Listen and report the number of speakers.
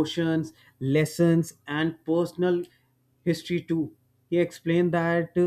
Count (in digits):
1